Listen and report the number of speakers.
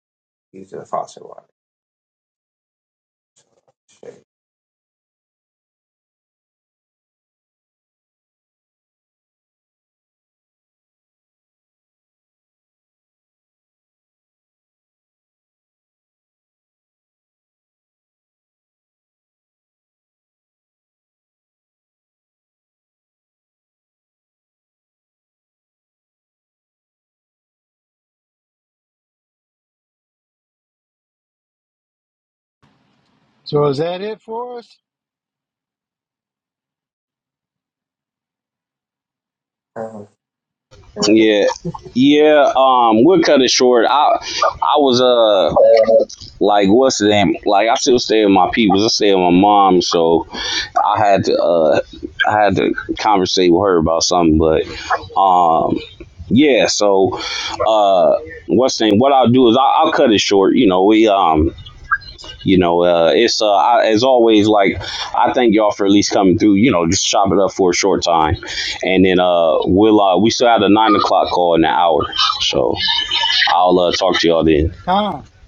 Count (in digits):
3